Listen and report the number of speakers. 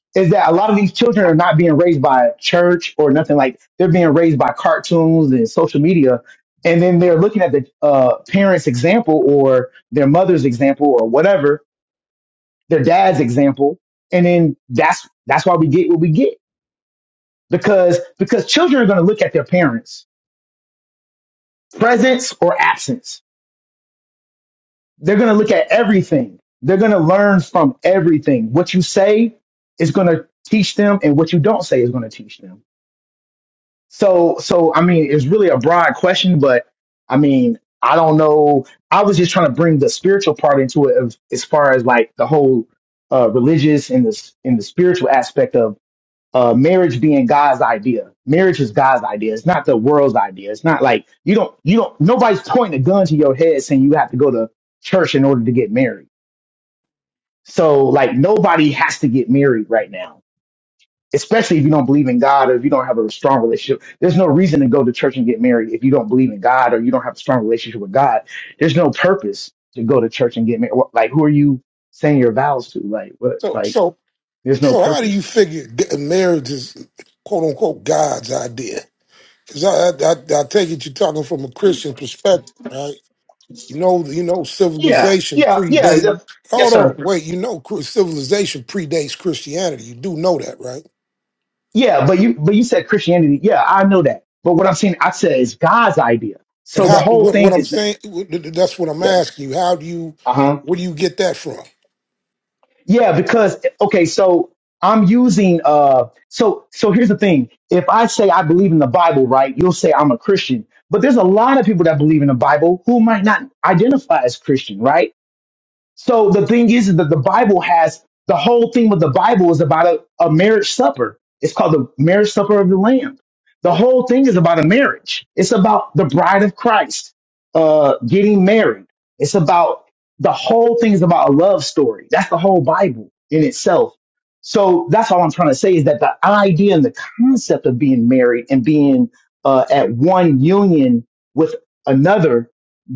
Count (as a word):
two